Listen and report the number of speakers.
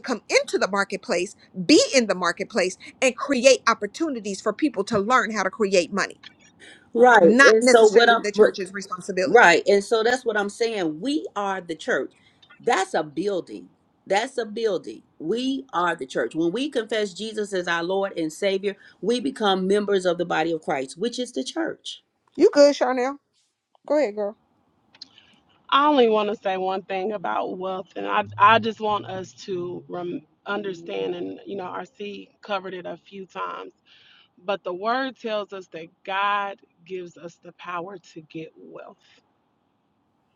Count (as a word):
three